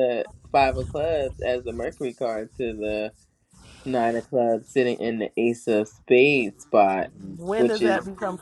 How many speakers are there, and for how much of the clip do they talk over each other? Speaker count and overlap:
two, about 5%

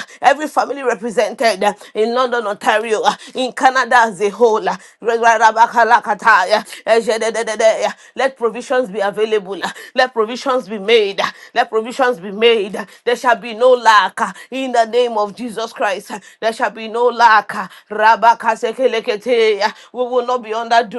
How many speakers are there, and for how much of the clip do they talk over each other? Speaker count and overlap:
one, no overlap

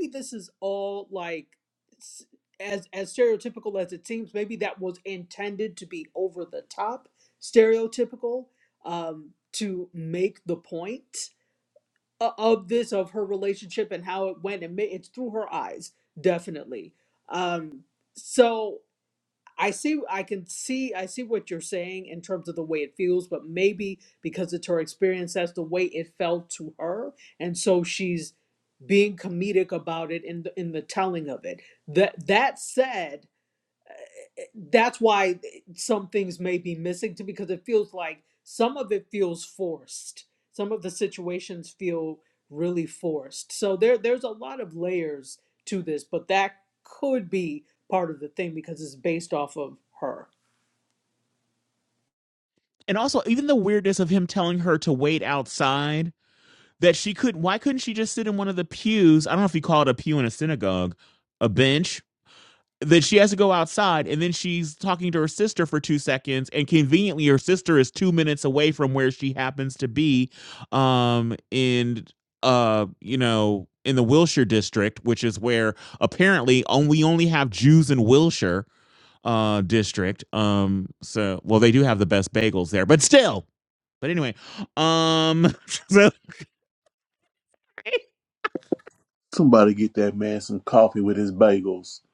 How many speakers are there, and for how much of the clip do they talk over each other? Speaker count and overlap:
three, no overlap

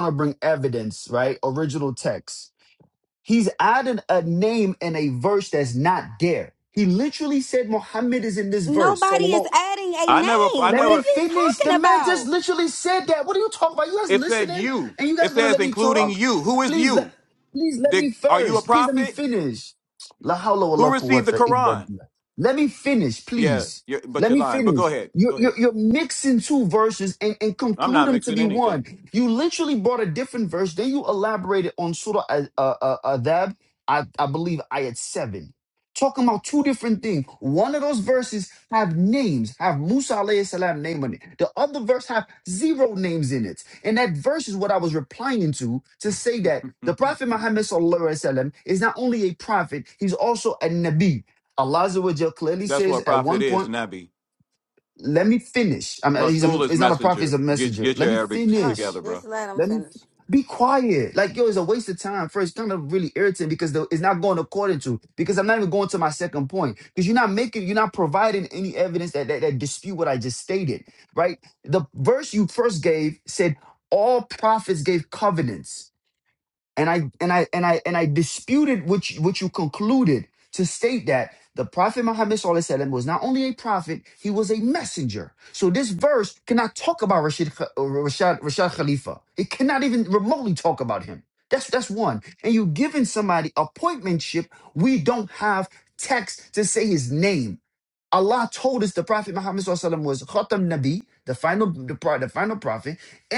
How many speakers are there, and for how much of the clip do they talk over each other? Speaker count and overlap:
three, about 14%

